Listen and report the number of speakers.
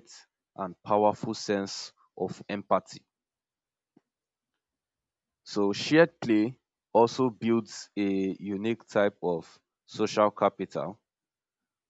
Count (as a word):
one